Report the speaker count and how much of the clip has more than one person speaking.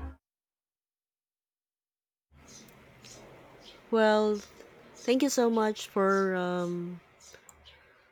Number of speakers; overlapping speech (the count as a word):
one, no overlap